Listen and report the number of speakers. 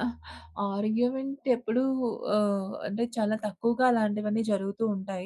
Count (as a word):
one